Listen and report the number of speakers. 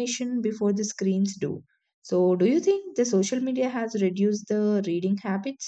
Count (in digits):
1